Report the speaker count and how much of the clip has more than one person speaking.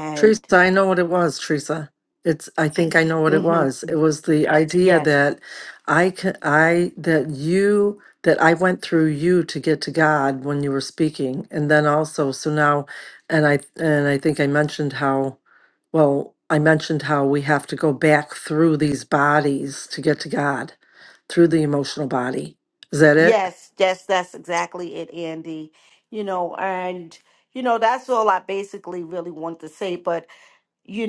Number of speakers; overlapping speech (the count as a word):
two, about 4%